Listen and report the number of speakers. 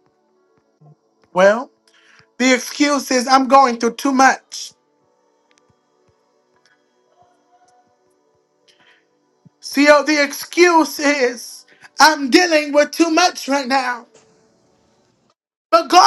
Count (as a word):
one